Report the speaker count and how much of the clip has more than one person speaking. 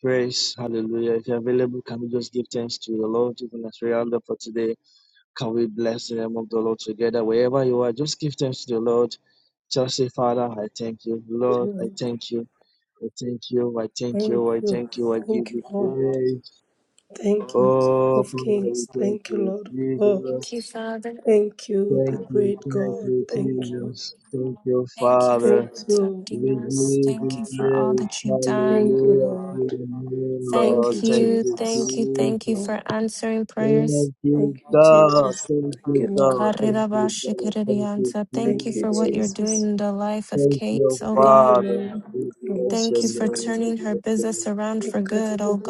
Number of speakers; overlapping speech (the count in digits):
3, about 48%